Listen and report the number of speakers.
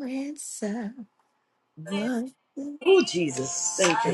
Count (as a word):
two